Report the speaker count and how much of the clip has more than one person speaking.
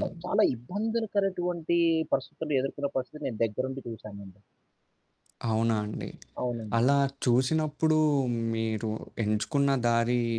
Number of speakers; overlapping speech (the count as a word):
two, about 2%